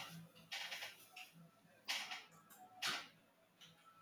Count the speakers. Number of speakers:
zero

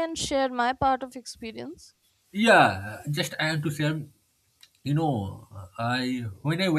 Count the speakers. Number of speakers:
two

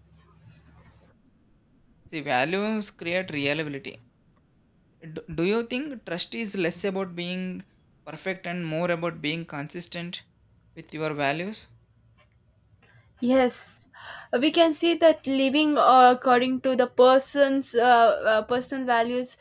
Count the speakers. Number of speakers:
two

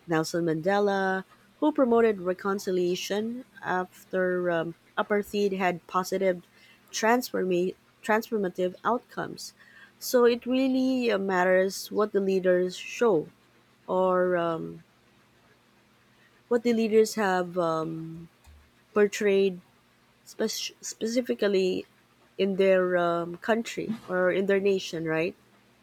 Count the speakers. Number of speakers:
one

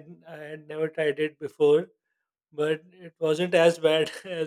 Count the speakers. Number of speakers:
one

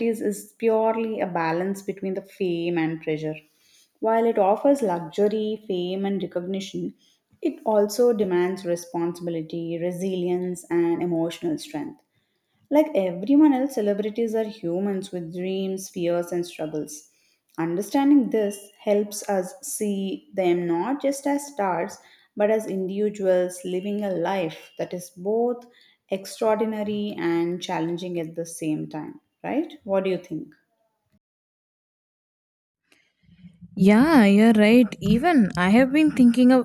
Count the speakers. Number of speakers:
two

